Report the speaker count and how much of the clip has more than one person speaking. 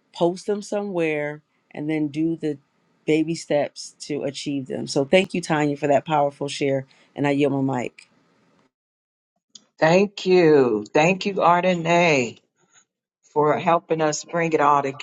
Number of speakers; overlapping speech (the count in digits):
2, no overlap